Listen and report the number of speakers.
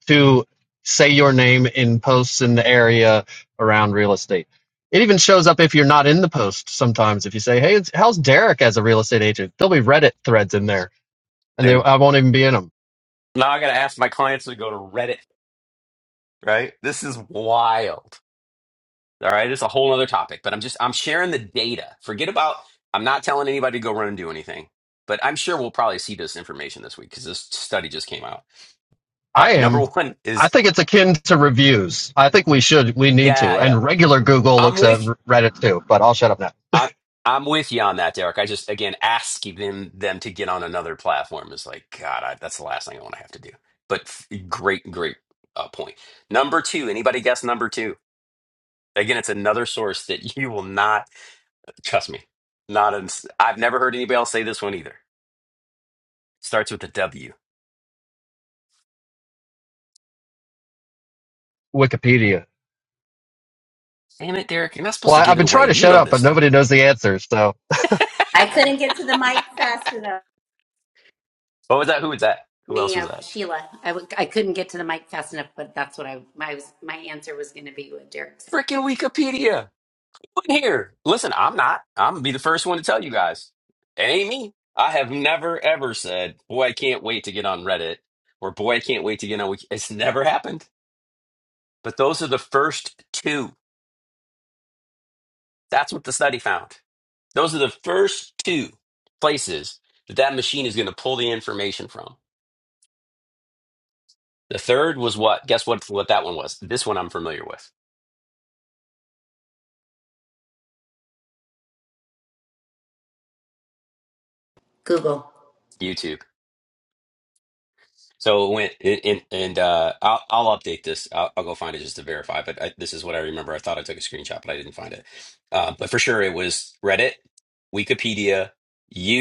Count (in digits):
3